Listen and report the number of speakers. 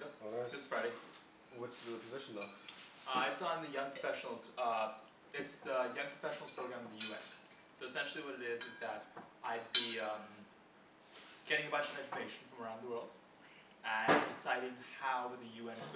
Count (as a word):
two